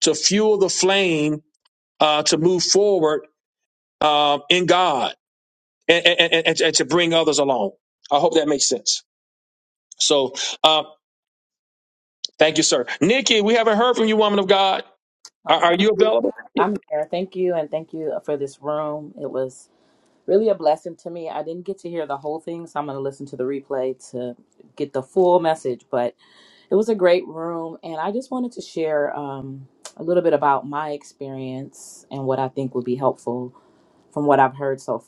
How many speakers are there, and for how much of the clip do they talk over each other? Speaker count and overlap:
2, about 2%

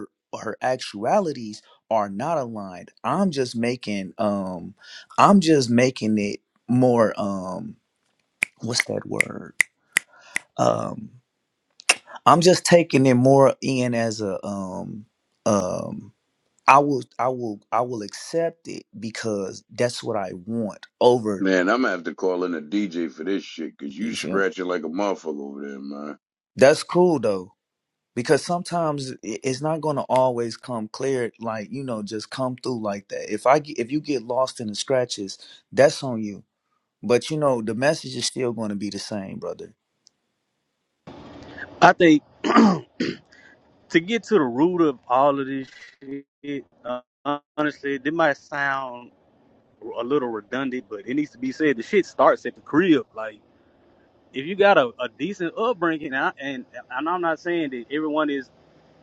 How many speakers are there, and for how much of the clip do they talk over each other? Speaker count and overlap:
3, about 1%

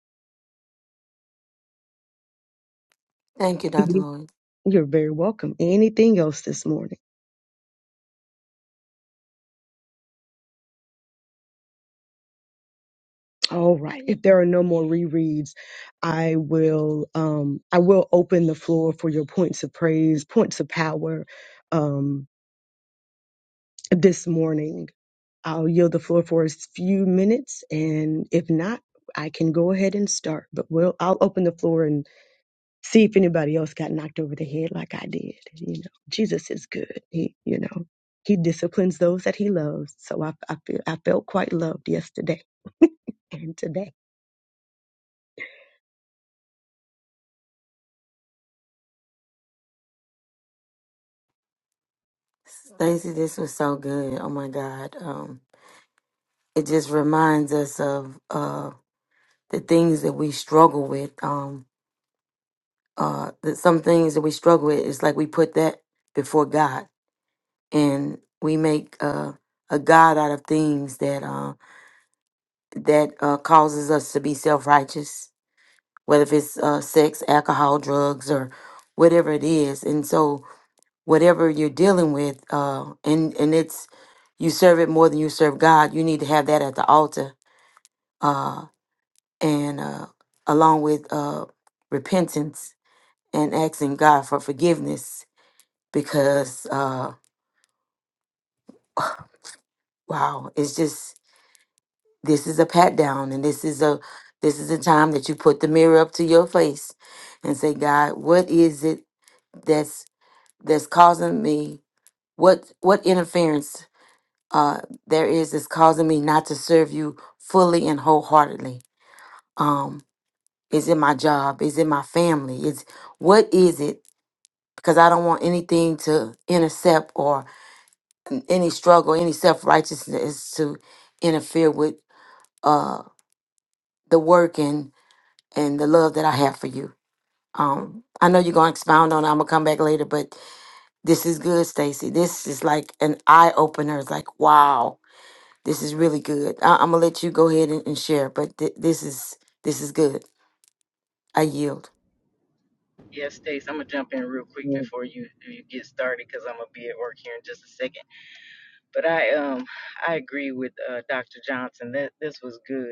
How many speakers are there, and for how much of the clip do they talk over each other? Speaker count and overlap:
3, under 1%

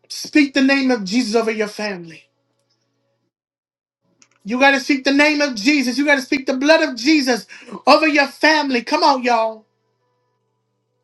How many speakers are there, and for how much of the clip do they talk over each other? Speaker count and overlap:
1, no overlap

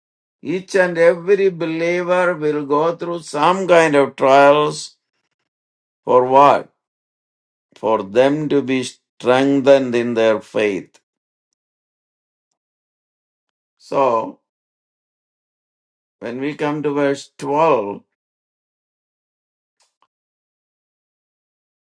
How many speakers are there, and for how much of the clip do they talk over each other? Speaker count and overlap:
1, no overlap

